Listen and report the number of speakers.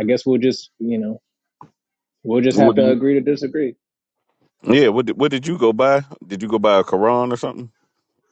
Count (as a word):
two